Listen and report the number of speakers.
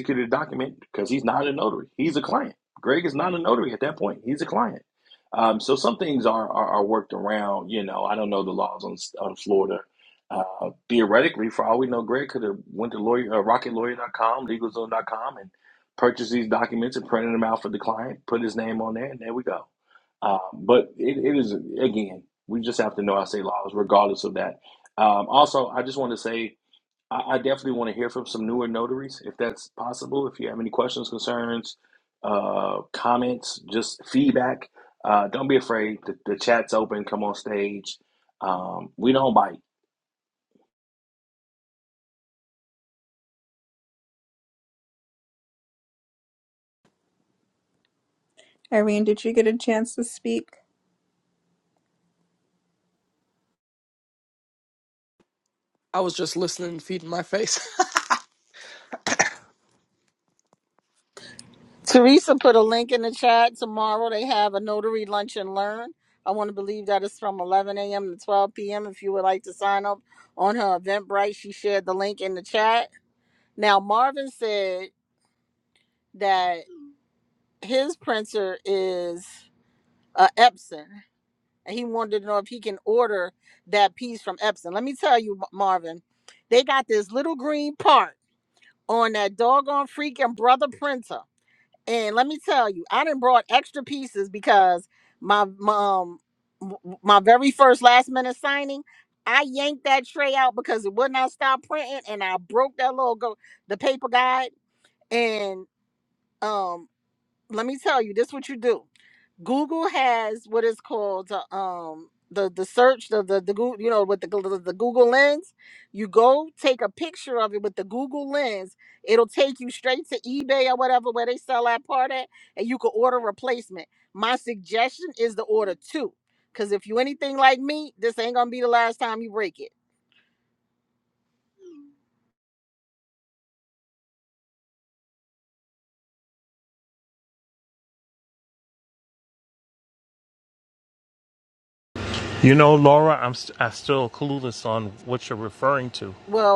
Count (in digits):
5